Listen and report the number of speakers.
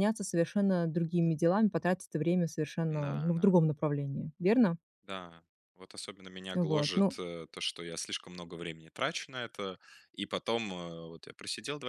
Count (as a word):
two